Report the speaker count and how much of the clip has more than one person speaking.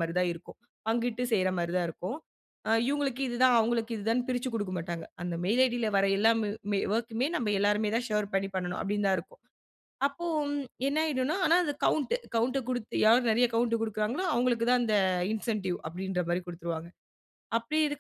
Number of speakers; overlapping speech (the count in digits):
1, no overlap